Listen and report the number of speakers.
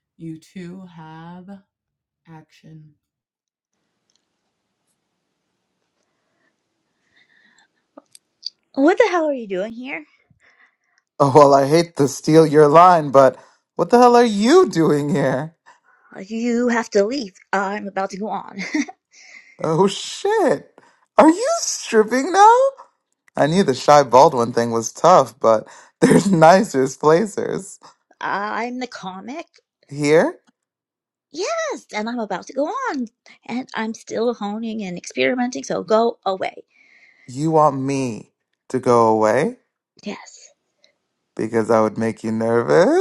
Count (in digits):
3